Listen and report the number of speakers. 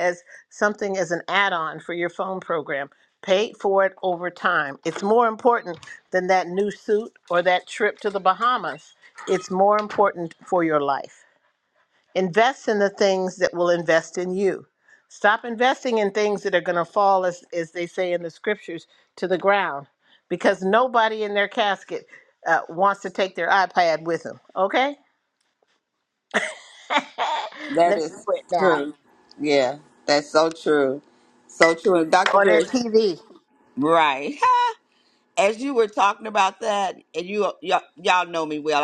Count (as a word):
two